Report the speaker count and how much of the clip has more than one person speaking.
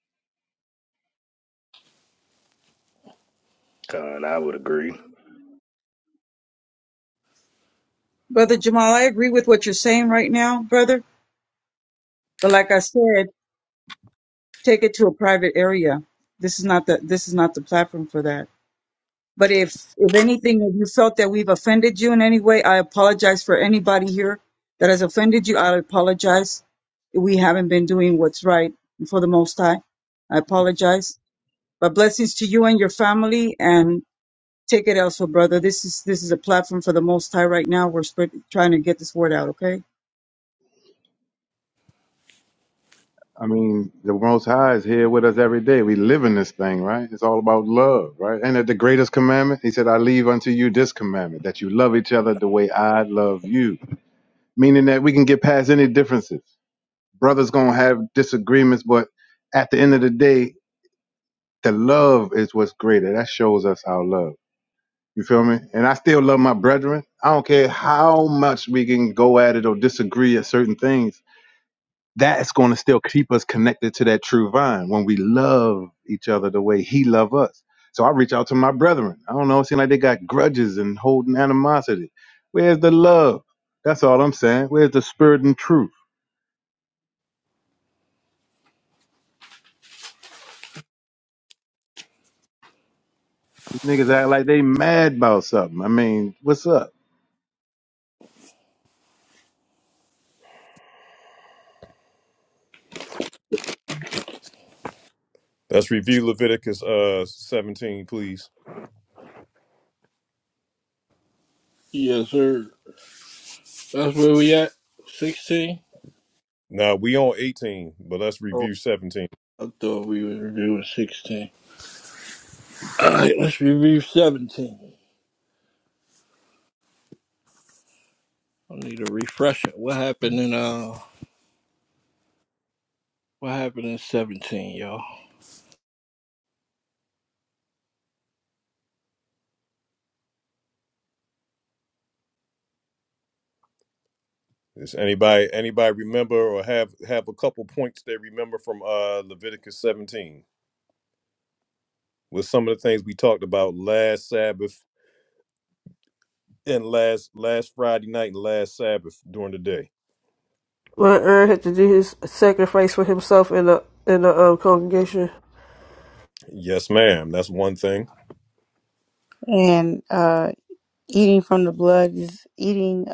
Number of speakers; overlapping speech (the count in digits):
7, under 1%